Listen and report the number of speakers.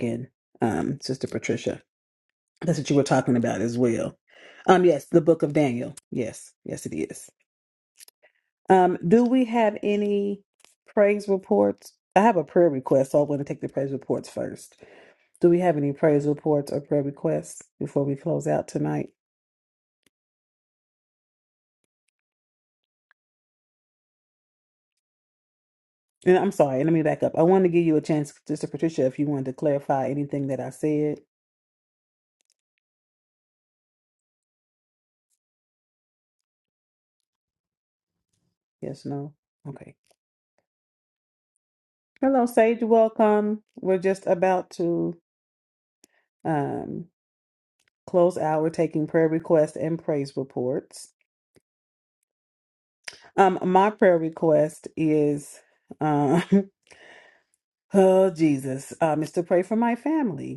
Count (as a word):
one